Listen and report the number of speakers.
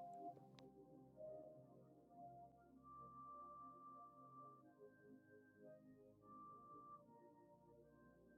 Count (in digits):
0